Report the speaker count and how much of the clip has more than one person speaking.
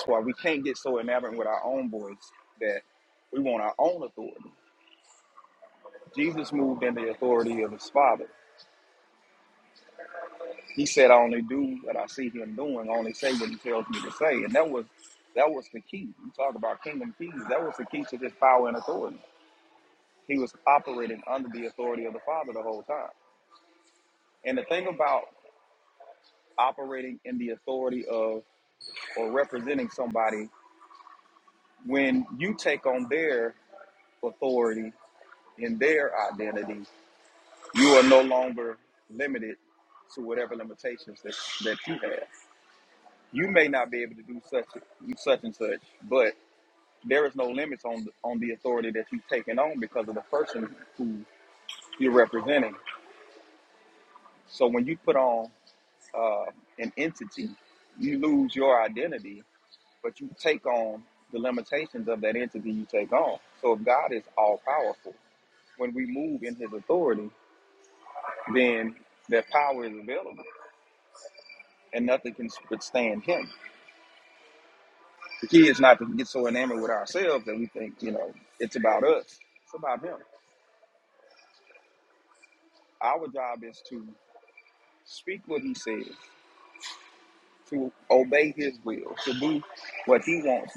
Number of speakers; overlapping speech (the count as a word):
one, no overlap